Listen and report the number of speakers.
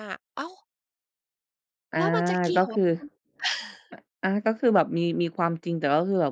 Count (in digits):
2